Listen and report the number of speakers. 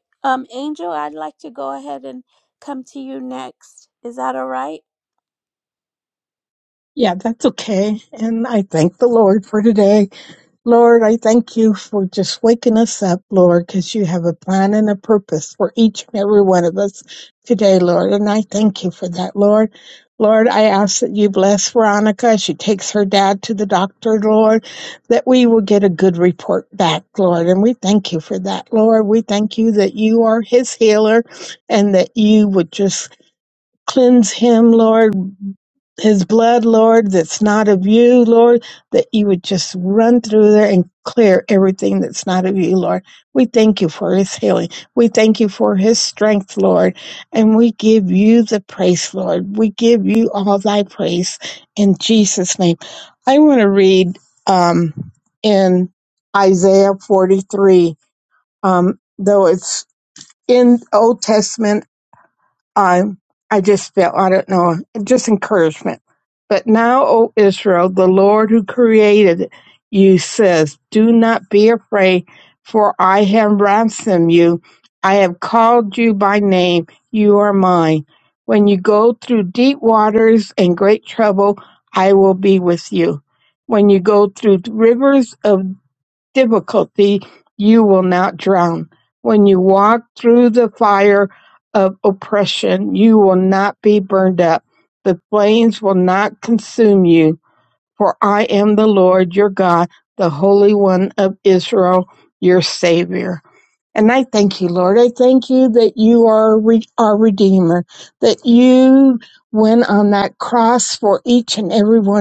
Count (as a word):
two